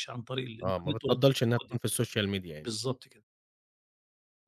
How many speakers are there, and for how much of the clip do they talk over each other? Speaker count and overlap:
2, about 13%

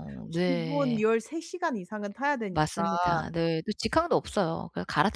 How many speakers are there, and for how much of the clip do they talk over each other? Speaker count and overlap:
2, about 20%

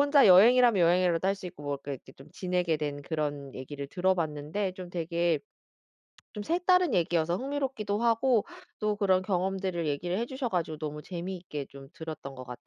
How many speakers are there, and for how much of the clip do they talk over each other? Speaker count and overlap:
1, no overlap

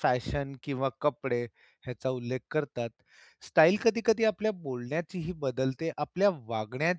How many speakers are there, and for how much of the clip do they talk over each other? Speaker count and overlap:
1, no overlap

